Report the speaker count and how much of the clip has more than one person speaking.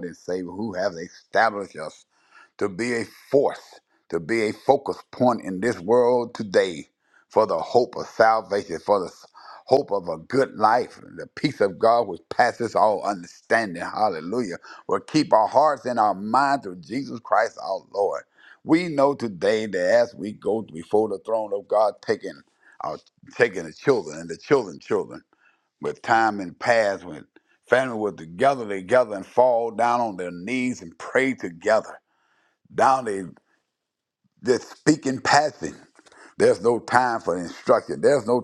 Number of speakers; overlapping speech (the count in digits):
1, no overlap